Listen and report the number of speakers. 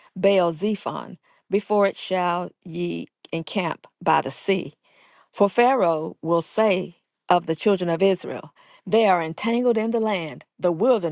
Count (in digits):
1